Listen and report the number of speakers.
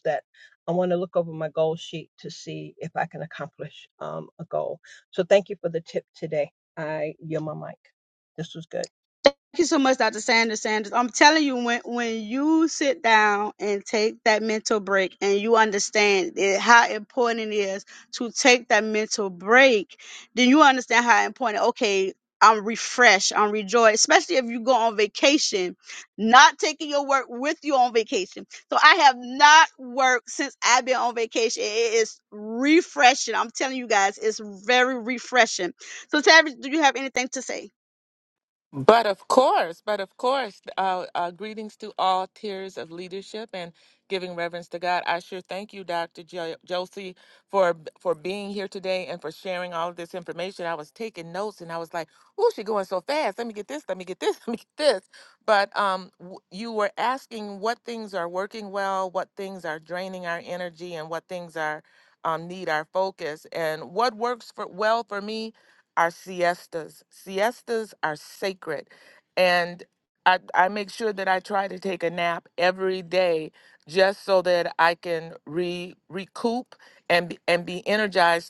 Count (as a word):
three